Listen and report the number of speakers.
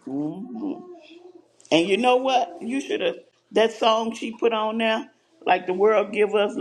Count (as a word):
one